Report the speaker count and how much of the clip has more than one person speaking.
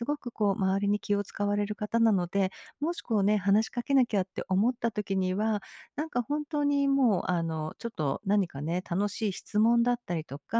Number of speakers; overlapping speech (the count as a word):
one, no overlap